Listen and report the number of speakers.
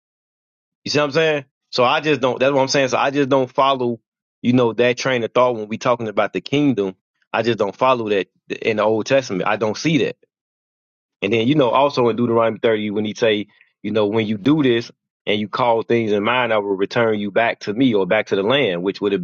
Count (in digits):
1